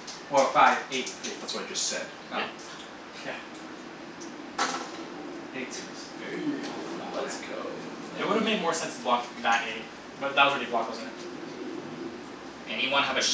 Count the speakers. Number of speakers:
4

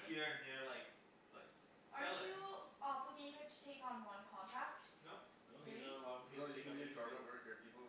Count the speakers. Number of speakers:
4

